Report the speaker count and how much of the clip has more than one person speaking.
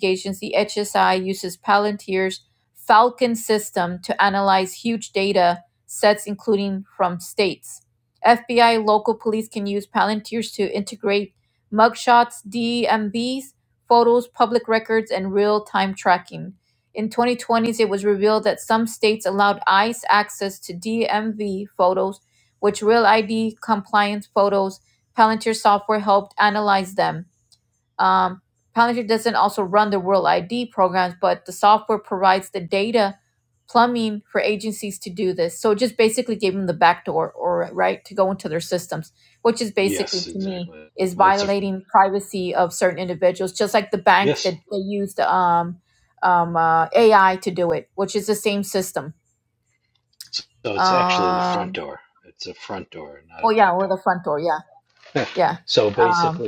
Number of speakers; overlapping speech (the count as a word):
two, about 7%